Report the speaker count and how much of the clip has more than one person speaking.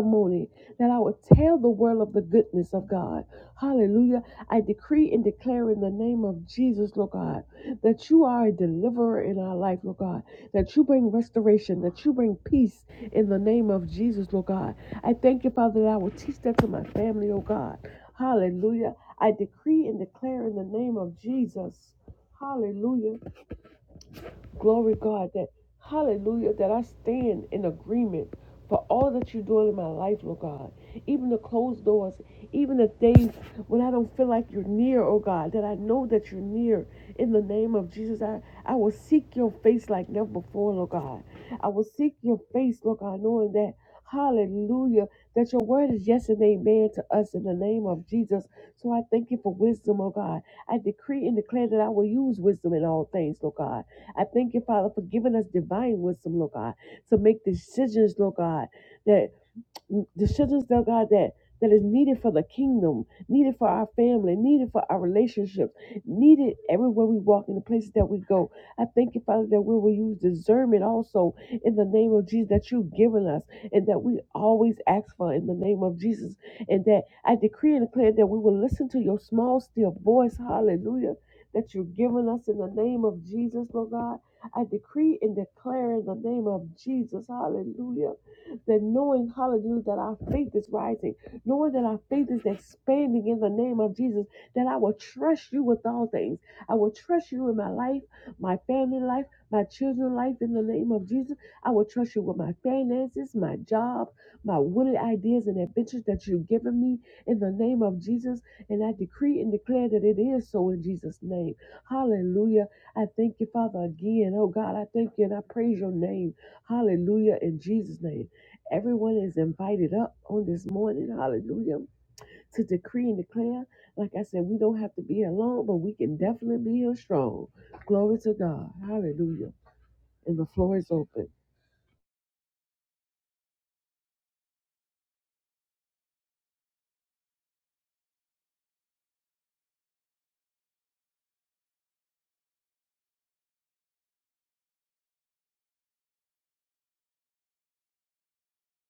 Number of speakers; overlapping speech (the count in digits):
1, no overlap